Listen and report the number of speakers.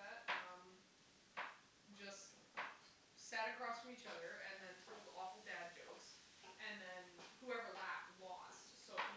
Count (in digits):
1